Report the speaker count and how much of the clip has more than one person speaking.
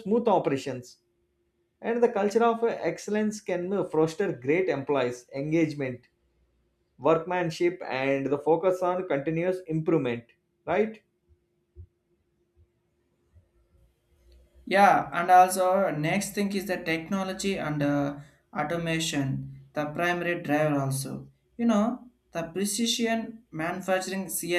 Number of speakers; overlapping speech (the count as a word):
two, no overlap